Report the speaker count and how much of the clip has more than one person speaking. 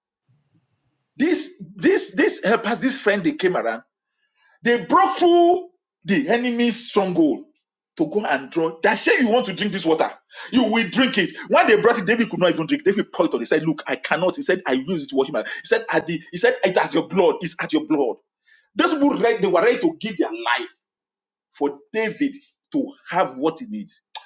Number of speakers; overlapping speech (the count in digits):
1, no overlap